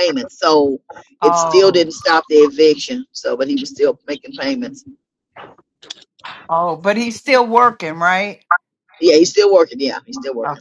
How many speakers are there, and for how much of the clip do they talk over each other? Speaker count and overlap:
two, about 6%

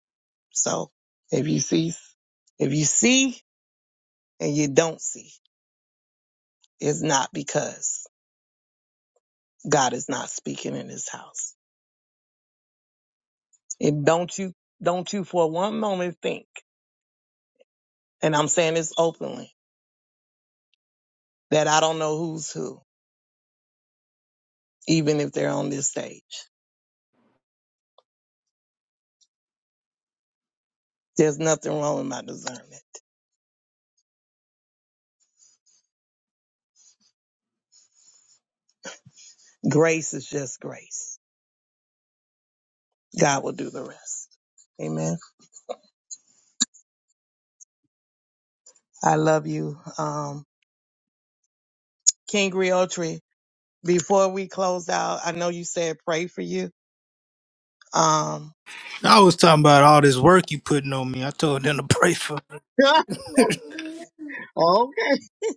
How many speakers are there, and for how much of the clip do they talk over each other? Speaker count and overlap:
two, no overlap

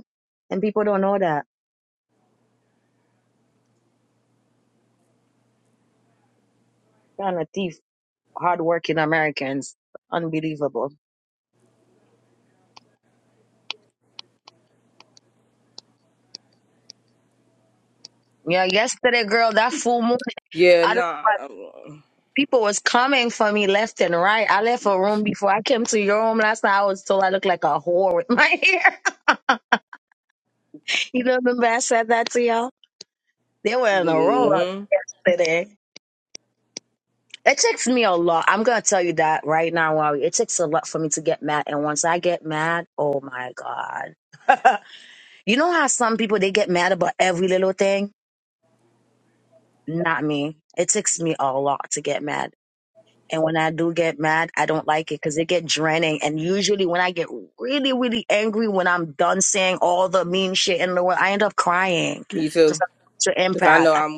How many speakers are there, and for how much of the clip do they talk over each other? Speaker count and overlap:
two, about 3%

